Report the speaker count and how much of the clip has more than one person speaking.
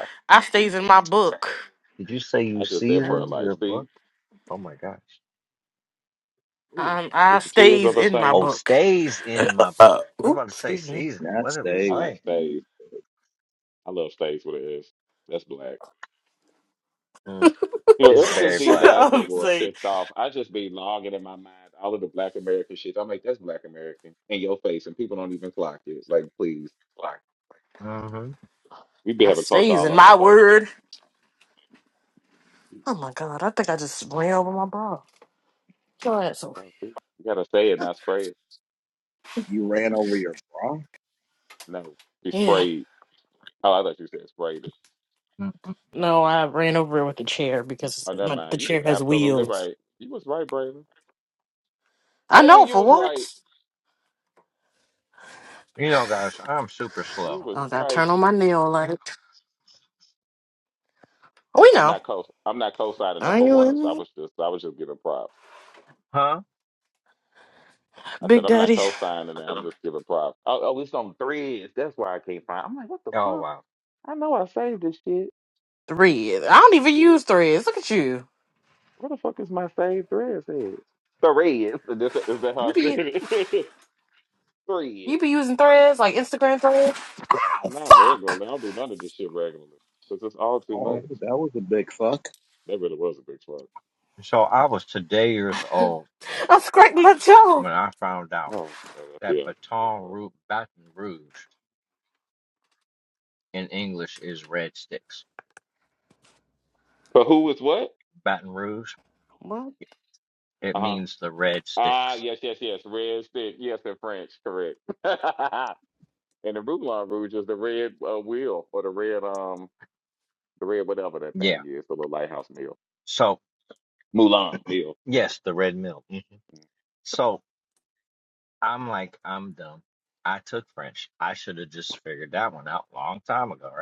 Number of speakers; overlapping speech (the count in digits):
4, about 12%